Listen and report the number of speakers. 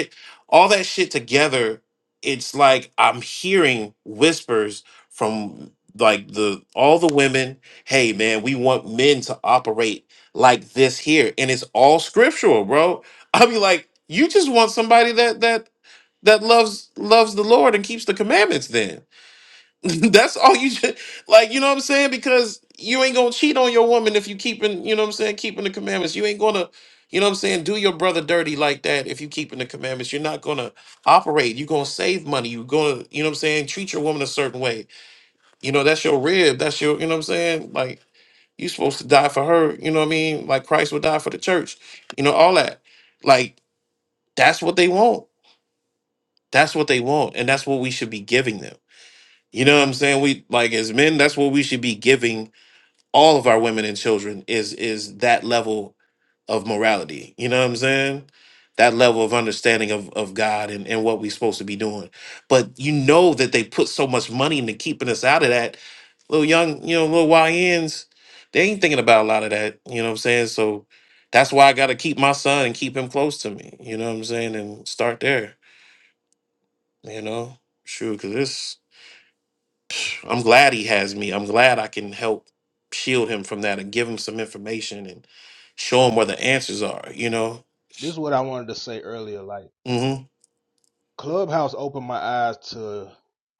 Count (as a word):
two